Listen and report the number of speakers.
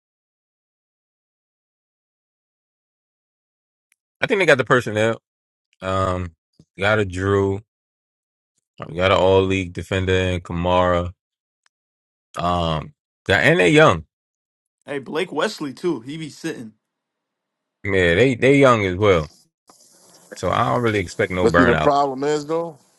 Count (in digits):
3